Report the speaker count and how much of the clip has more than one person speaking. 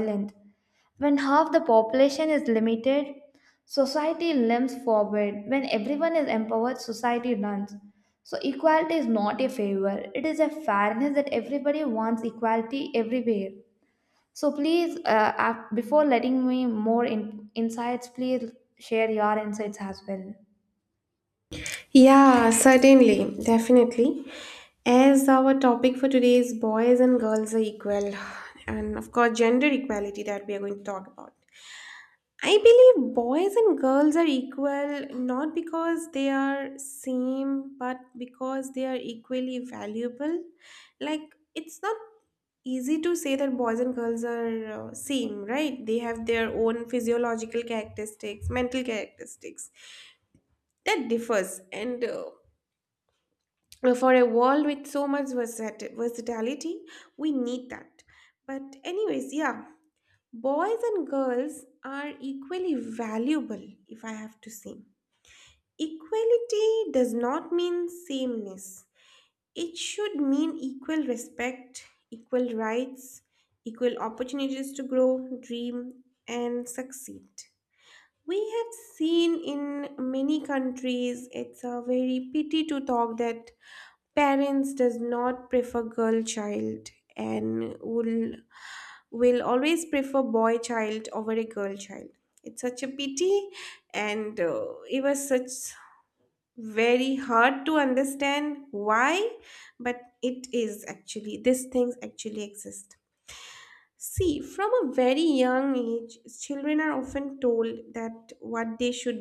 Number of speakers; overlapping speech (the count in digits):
2, no overlap